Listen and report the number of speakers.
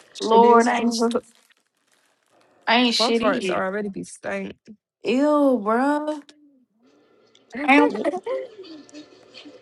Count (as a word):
two